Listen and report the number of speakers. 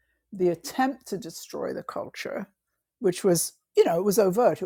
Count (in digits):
1